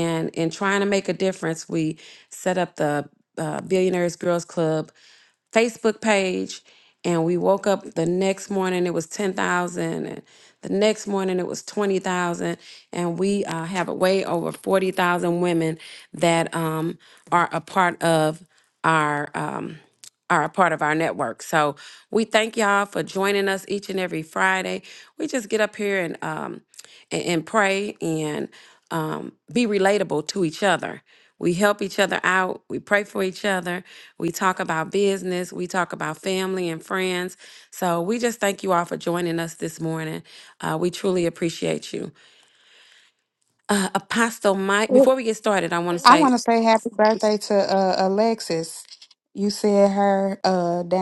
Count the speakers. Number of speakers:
two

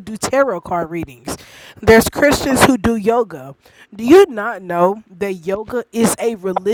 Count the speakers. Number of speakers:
one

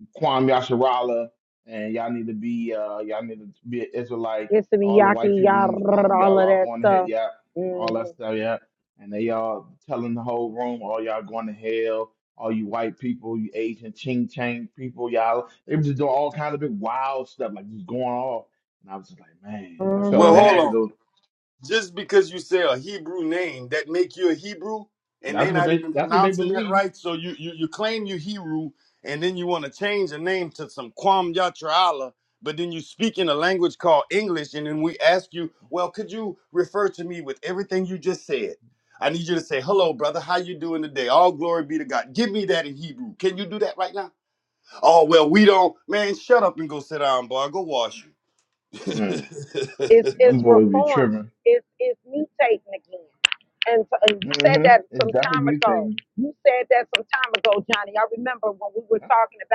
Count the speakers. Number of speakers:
three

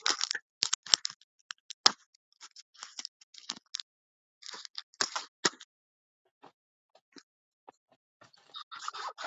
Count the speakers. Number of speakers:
zero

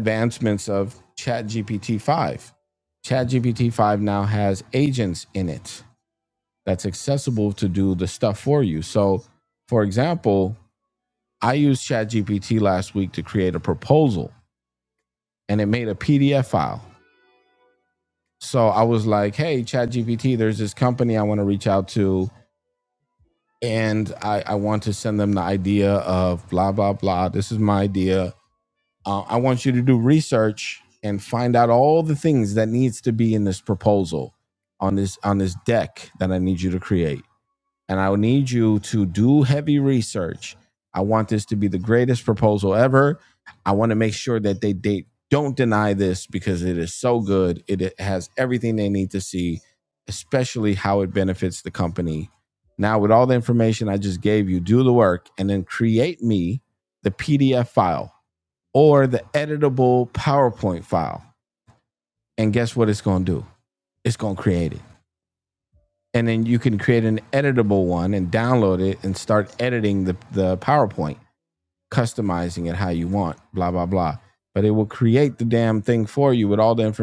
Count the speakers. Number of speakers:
one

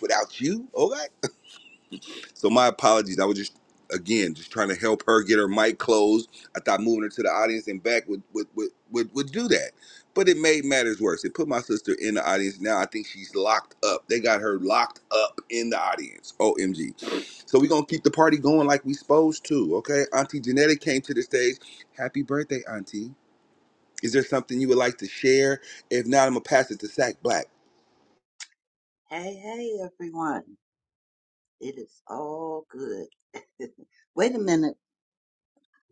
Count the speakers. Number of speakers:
two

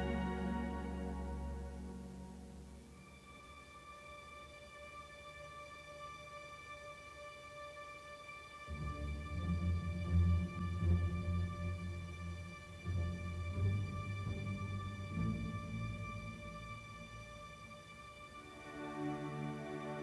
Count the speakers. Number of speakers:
zero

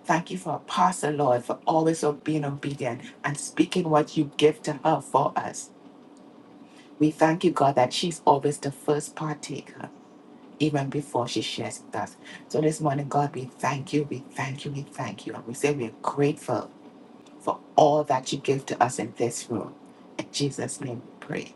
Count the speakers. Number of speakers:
one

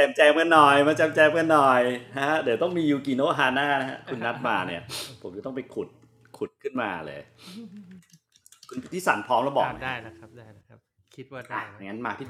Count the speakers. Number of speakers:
two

